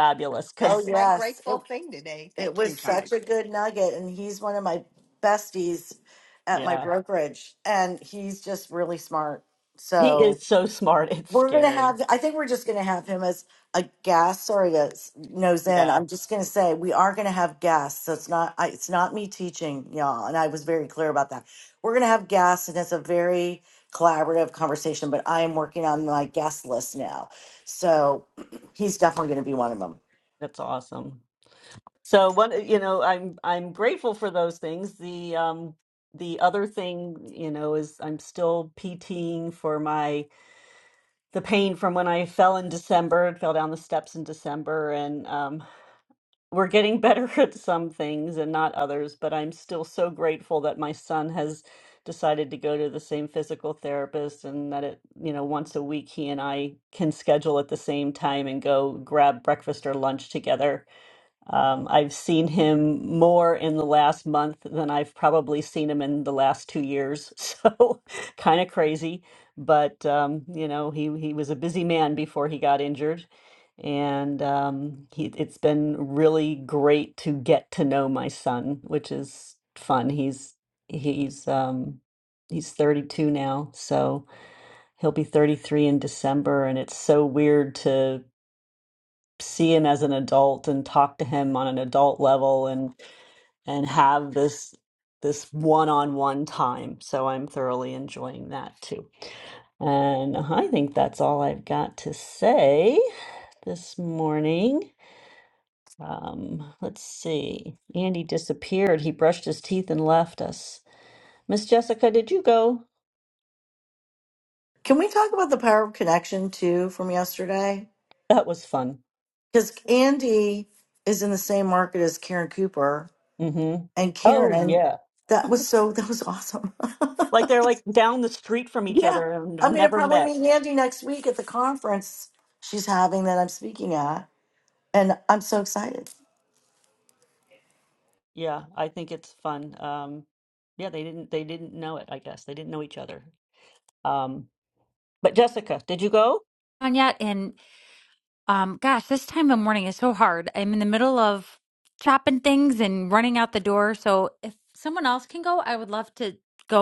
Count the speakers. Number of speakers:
four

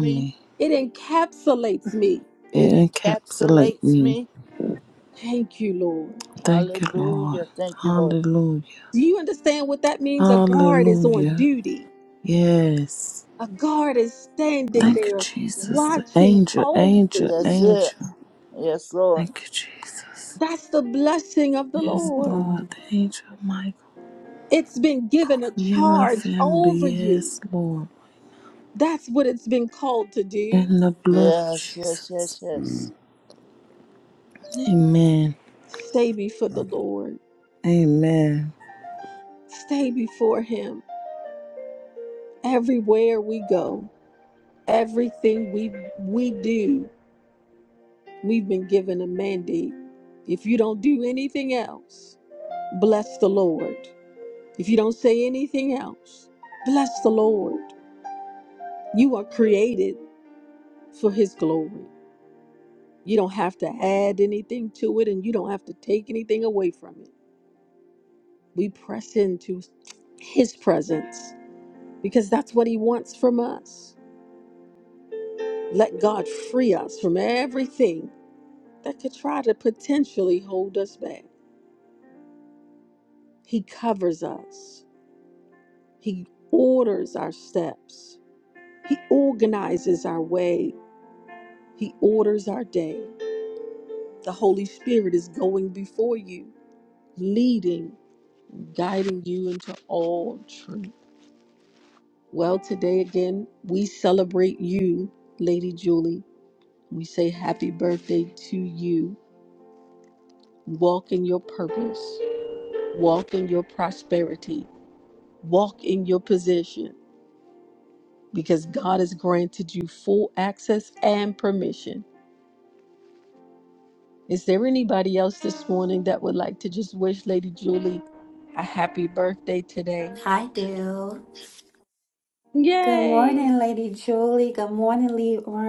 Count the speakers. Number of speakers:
four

